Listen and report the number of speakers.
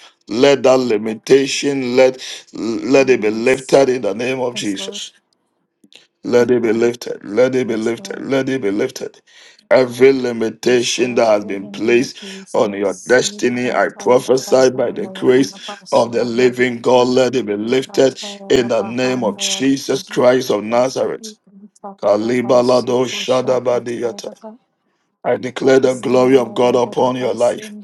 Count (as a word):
one